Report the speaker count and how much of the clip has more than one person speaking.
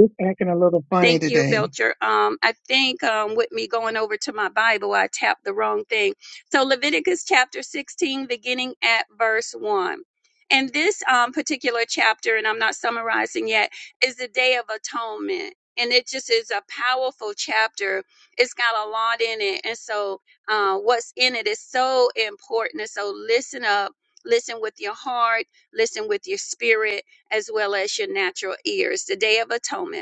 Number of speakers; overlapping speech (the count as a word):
two, about 2%